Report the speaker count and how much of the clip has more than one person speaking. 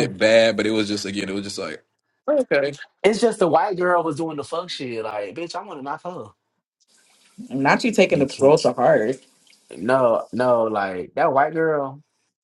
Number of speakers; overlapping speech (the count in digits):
3, about 4%